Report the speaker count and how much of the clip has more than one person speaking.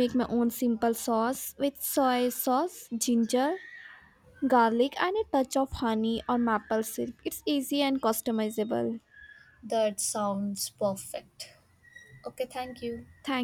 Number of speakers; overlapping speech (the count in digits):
2, no overlap